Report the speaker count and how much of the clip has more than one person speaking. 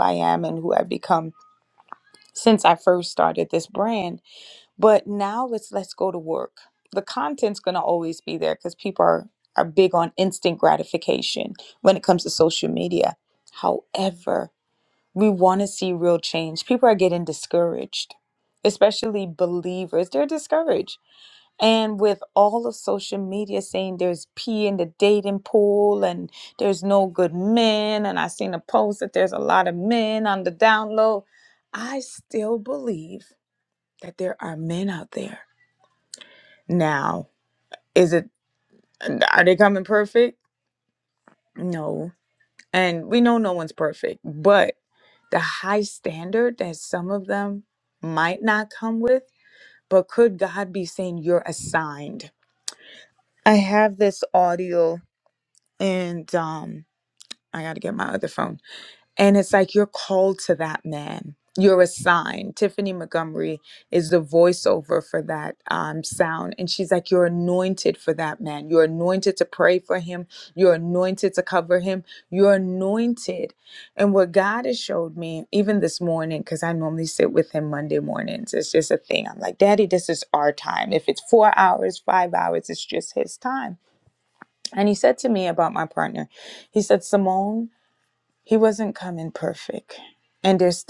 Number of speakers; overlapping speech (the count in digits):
1, no overlap